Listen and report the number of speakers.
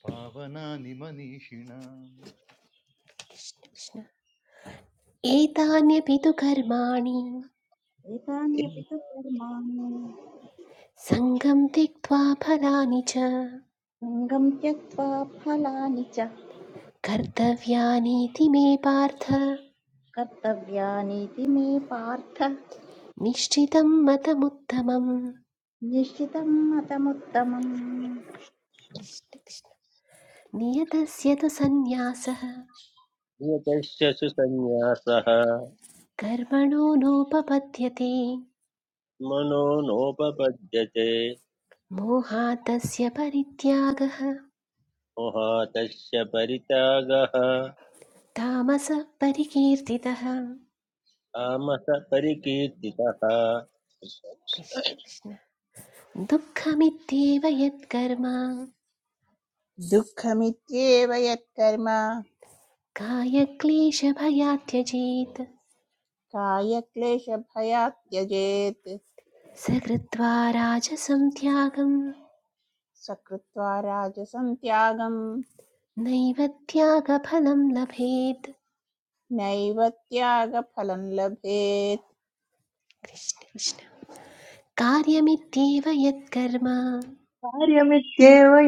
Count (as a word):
six